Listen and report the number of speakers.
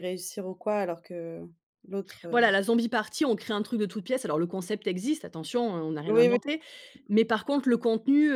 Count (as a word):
two